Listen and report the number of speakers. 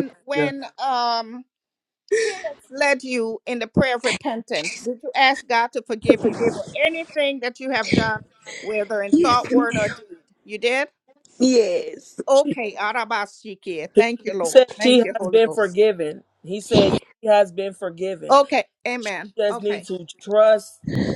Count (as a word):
three